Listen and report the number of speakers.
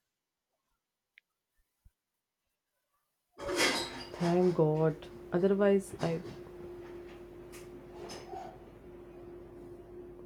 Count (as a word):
one